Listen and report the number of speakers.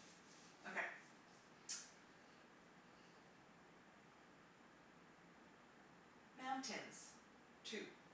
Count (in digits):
1